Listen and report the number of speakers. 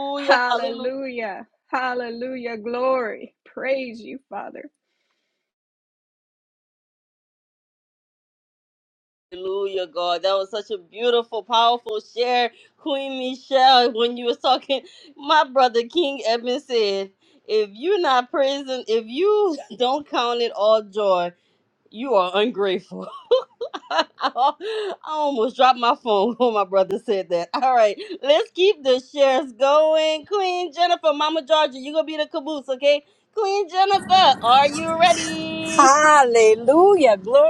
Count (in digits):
3